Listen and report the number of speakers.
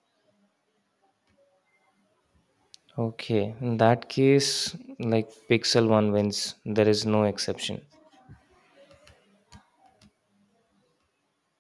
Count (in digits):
1